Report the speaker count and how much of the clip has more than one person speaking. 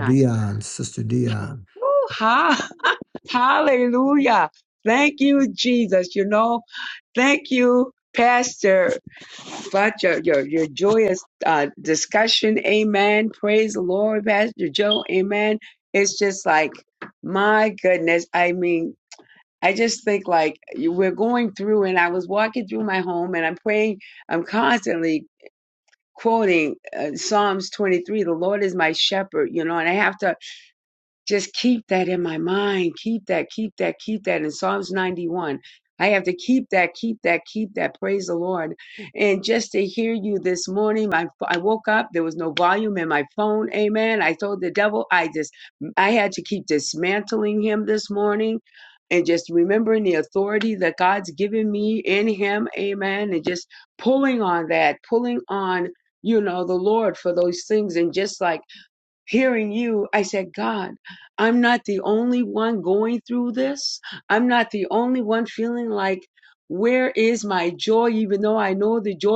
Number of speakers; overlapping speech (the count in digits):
2, under 1%